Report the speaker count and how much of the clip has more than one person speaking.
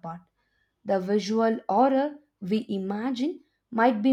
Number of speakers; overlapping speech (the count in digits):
1, no overlap